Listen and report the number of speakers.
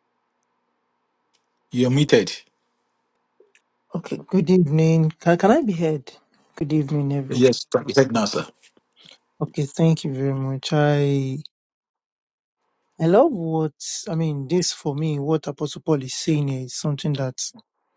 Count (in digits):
2